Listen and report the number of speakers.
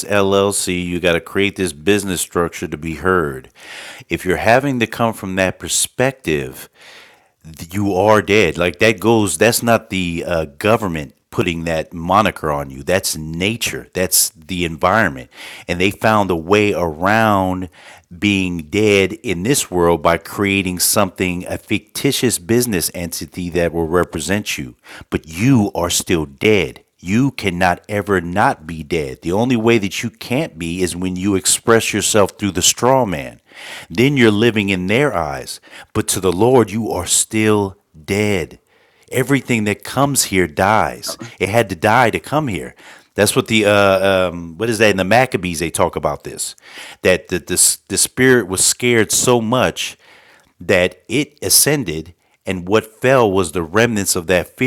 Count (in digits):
1